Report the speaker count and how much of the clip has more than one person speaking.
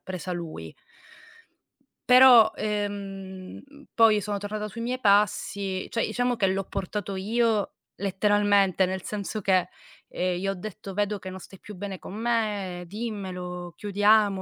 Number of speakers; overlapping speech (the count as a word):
one, no overlap